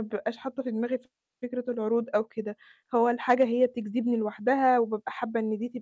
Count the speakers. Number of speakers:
1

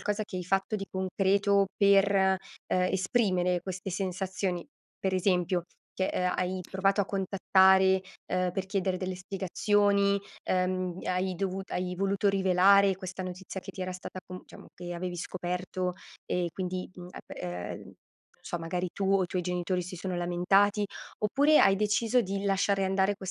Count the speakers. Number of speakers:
1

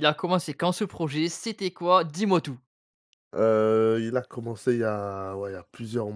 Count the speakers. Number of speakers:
2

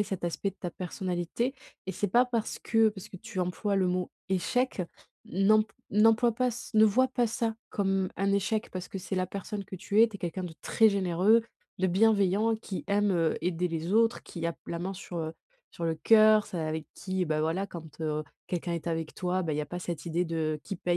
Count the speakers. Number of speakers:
1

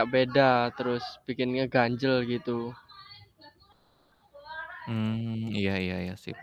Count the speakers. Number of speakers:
2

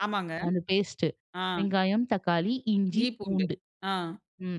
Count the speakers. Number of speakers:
2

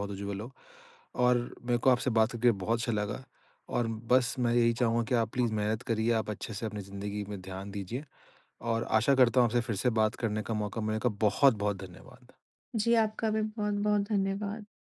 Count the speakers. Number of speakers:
2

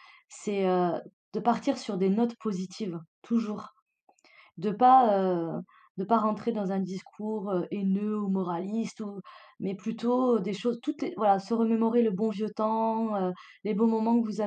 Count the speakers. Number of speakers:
1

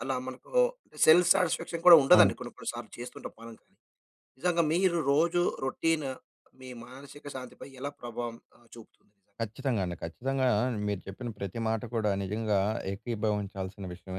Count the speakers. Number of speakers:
2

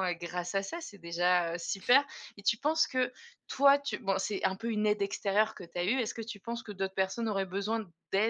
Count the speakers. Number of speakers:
1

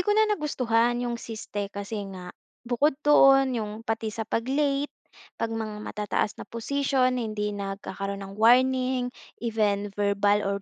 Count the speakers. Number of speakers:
1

